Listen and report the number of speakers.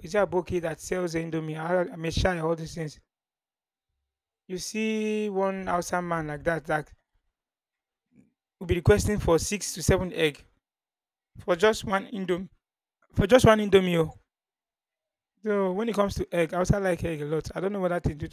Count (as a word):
one